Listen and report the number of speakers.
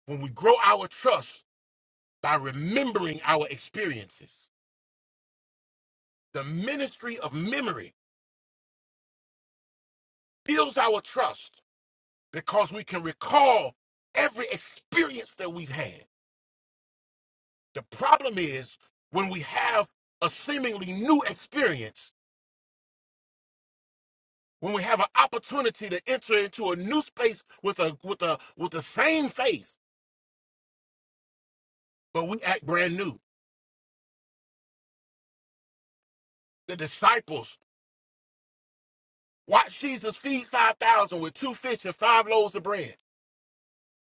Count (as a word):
one